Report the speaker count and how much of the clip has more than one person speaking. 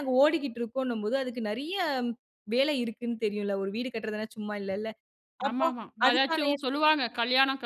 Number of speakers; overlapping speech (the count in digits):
2, about 13%